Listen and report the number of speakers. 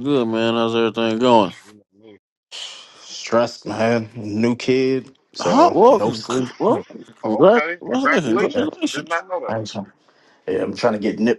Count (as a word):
three